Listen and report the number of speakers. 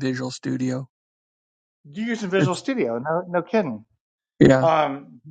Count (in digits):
2